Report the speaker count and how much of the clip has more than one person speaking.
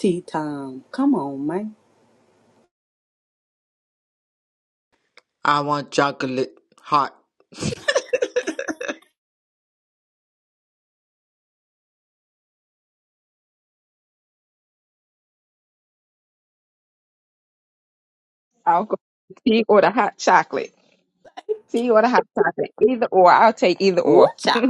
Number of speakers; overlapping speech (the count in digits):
3, about 1%